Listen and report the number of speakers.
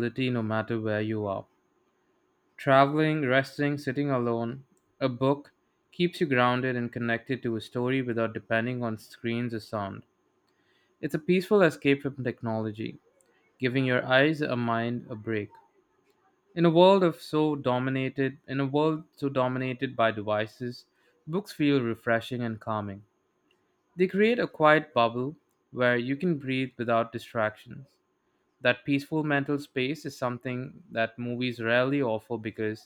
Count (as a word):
one